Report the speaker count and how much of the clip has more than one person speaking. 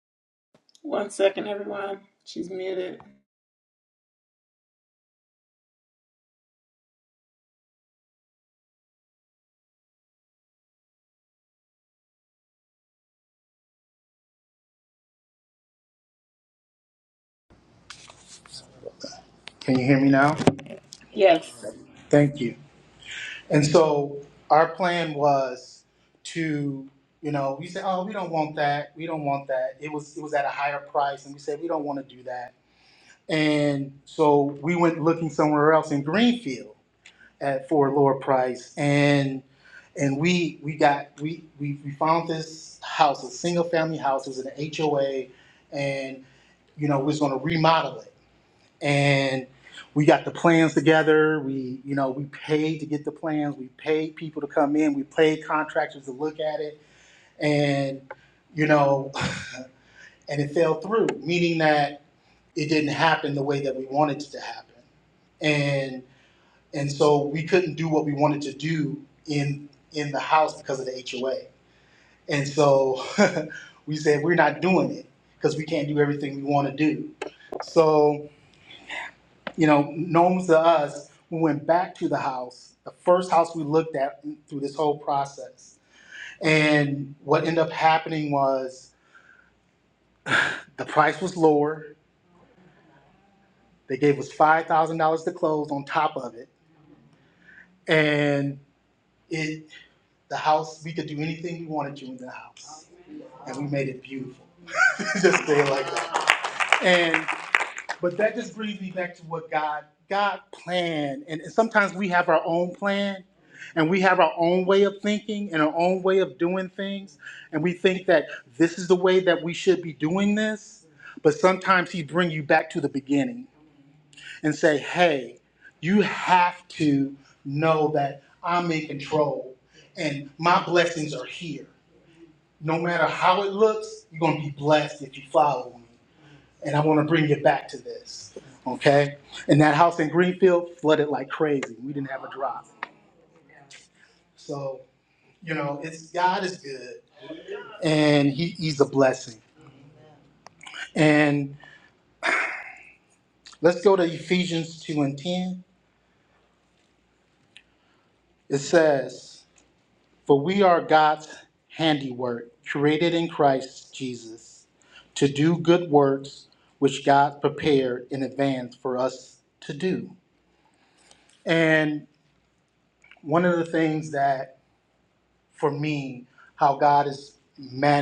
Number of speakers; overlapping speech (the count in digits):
2, no overlap